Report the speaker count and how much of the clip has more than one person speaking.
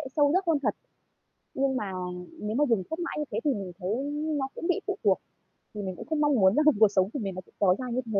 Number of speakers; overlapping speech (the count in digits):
1, no overlap